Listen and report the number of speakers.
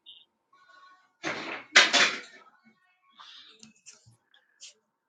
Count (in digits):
0